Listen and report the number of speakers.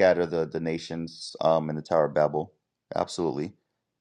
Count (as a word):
one